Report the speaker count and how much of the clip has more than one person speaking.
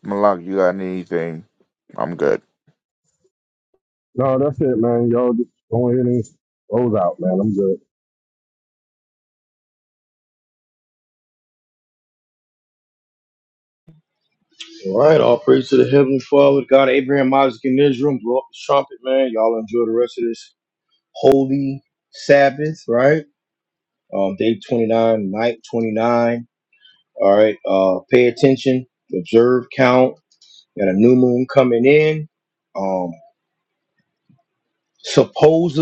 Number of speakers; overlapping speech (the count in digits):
3, no overlap